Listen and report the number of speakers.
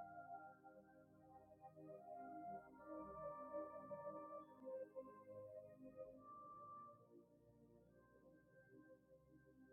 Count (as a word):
zero